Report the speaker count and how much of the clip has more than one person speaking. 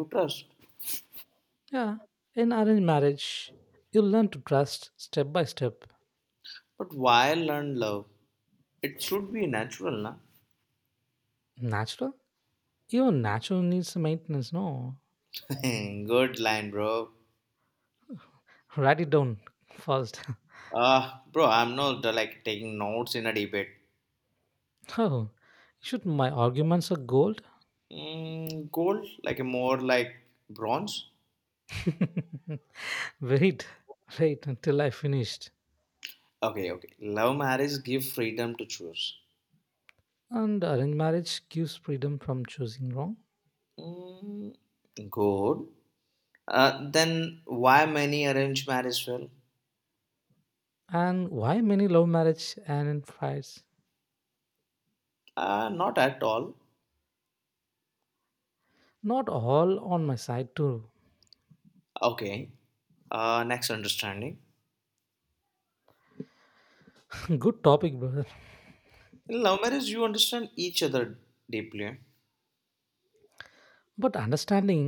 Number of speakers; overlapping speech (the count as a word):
two, no overlap